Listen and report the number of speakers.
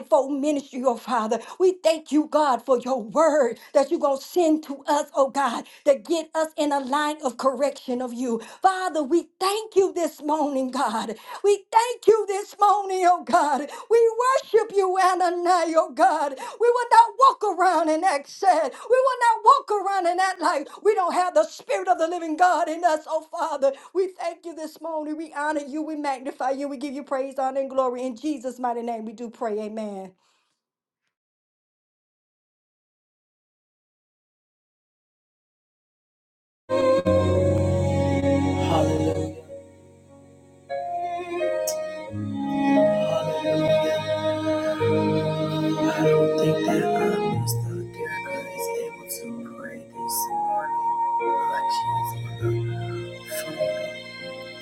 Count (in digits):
2